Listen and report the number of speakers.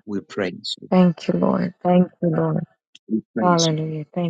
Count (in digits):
2